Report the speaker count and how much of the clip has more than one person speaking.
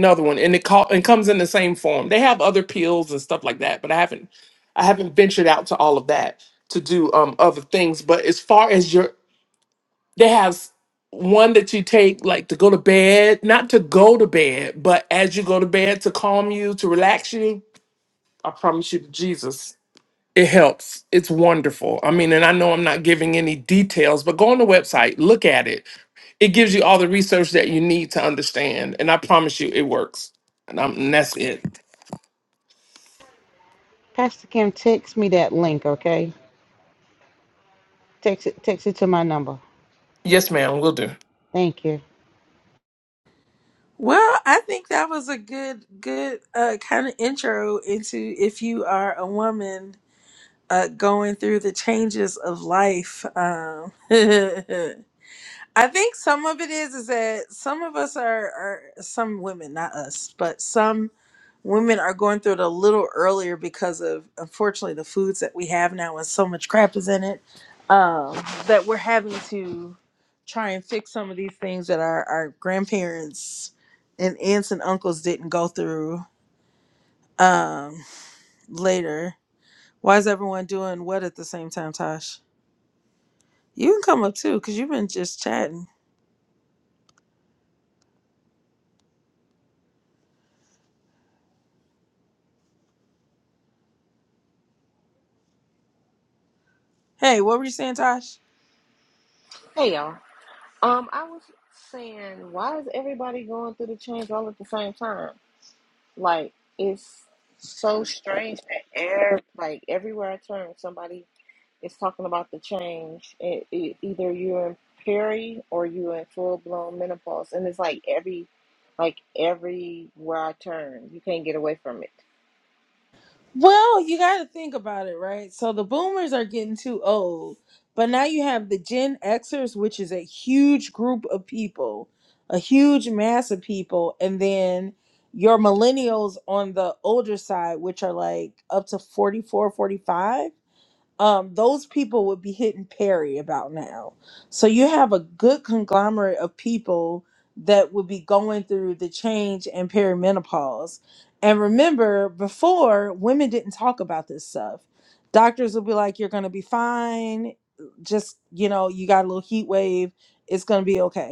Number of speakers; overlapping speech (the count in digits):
4, no overlap